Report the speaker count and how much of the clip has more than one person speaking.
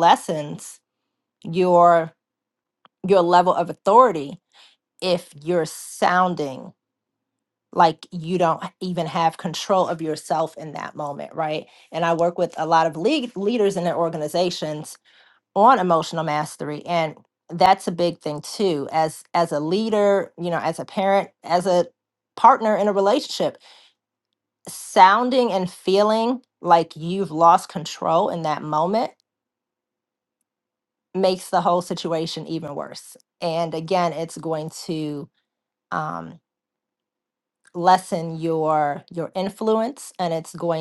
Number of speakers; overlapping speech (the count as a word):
one, no overlap